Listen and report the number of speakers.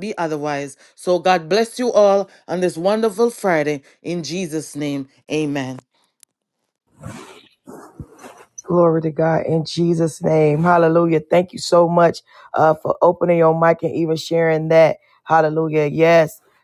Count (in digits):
2